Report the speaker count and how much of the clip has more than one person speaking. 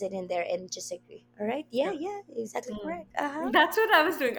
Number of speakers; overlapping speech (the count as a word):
two, about 10%